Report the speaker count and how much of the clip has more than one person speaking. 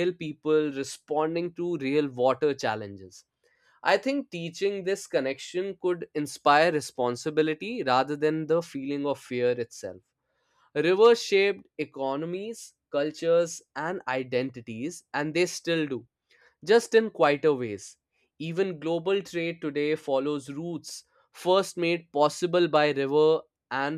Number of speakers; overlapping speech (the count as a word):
one, no overlap